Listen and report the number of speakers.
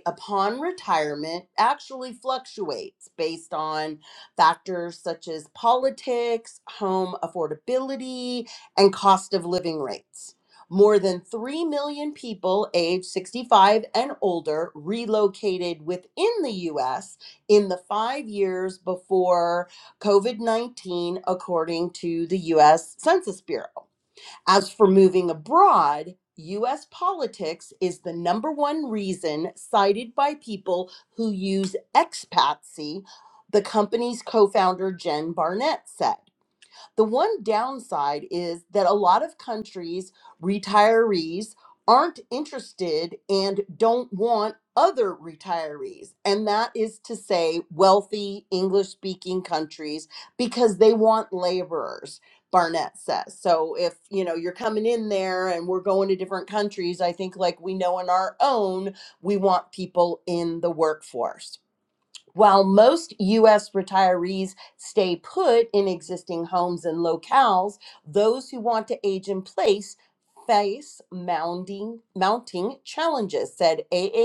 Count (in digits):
1